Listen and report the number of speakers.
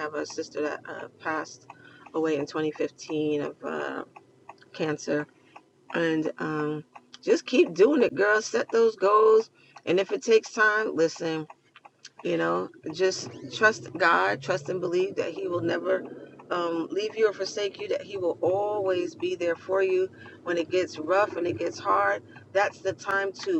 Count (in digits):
1